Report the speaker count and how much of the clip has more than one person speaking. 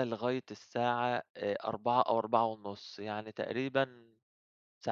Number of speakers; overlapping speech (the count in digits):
1, no overlap